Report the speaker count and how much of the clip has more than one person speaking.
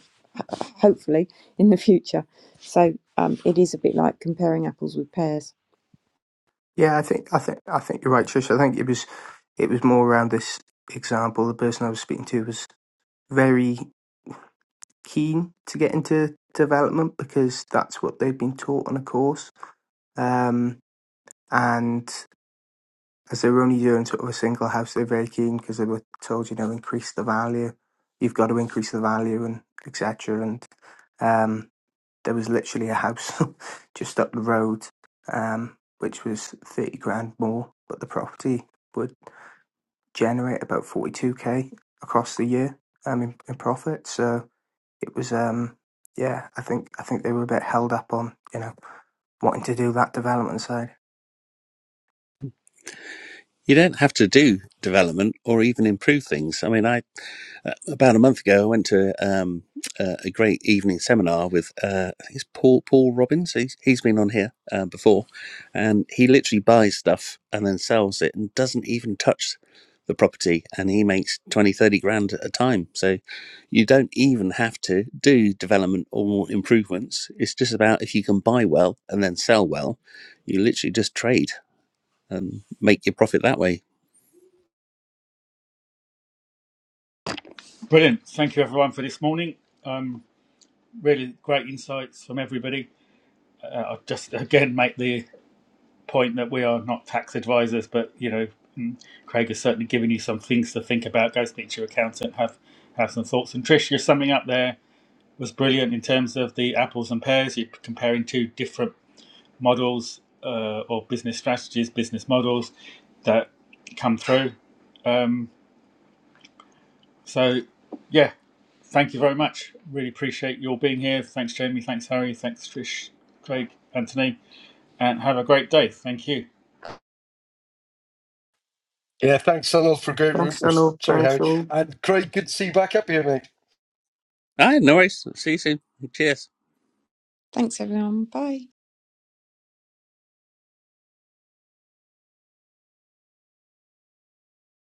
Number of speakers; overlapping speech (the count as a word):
five, about 1%